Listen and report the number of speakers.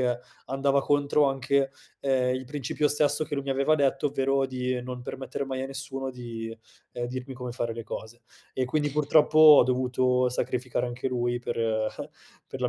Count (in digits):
1